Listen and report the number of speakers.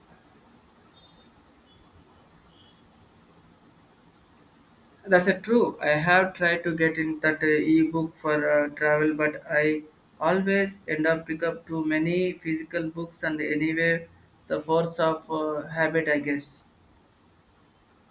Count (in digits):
1